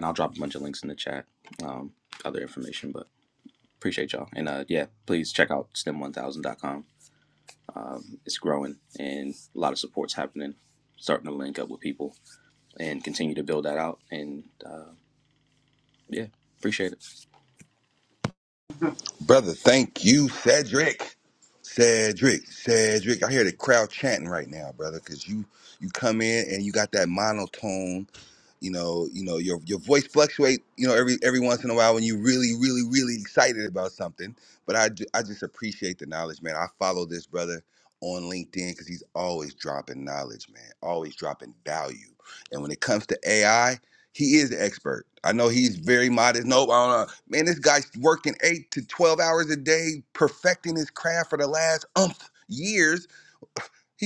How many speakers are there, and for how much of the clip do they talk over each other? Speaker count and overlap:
2, no overlap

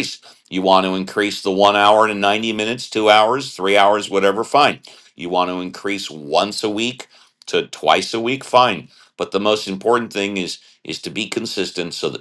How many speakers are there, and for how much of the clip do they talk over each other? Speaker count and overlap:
1, no overlap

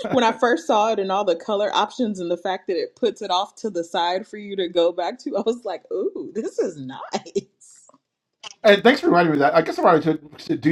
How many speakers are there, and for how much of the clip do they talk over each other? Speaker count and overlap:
2, about 1%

